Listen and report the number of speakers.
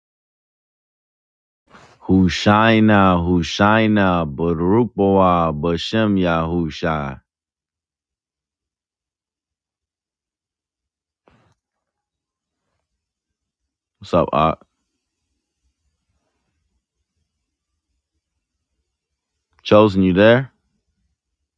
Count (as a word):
one